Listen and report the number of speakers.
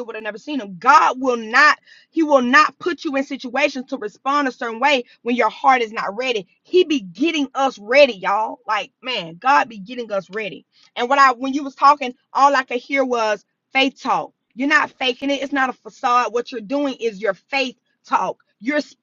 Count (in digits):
1